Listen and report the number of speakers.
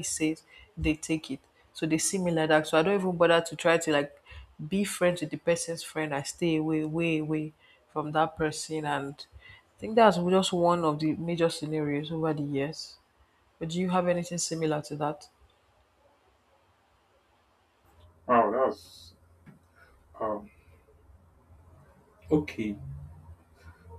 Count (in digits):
2